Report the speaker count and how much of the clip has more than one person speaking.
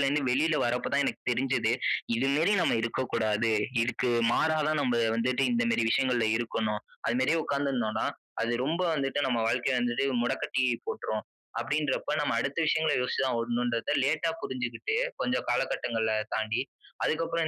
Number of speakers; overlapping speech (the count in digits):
1, no overlap